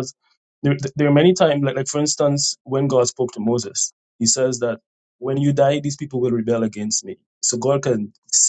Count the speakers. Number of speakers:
one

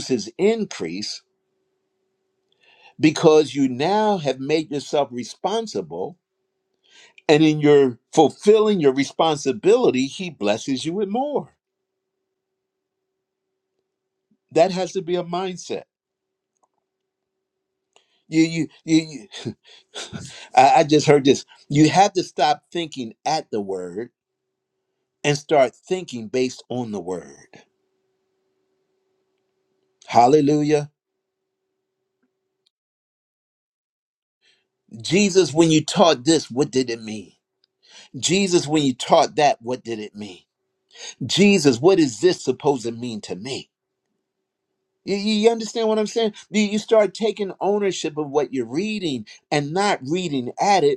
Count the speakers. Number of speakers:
one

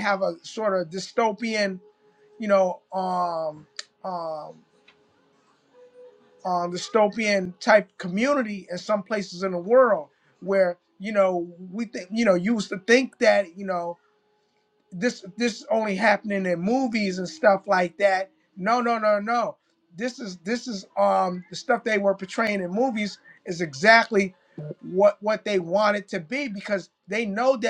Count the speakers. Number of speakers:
one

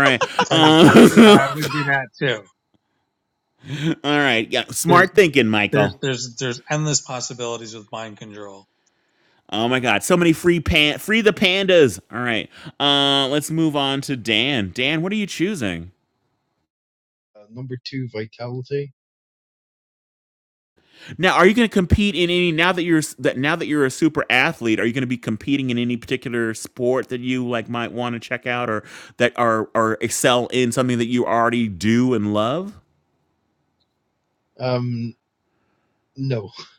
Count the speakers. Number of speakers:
three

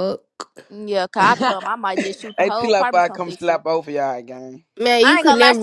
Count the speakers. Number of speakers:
three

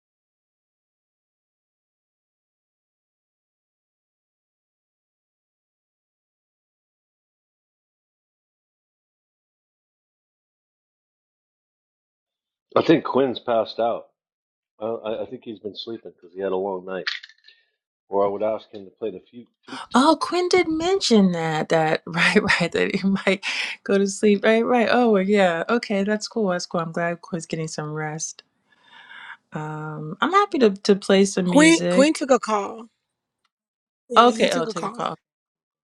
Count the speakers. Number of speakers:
three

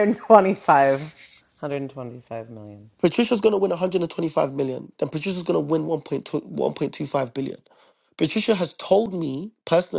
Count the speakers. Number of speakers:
two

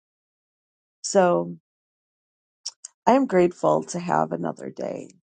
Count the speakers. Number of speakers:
one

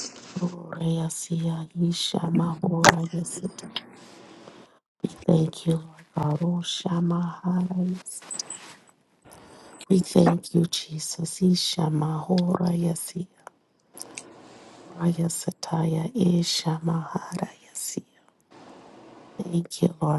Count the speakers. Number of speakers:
one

